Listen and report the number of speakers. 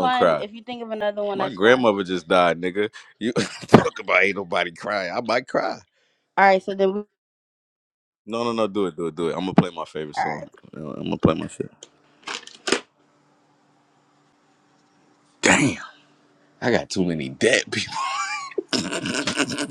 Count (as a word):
two